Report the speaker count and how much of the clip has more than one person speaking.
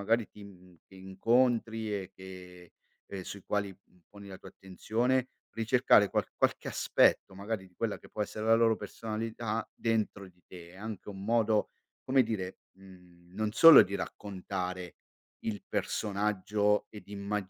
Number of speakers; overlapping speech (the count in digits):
1, no overlap